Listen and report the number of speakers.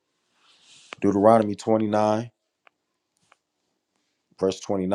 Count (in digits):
1